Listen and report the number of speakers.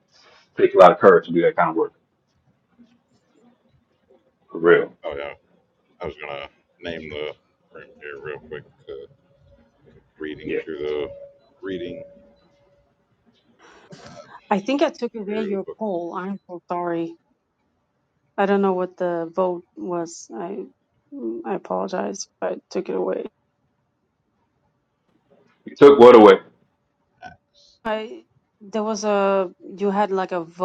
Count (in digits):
3